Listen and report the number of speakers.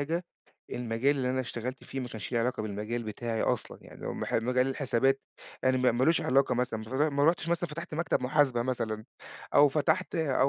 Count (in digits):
1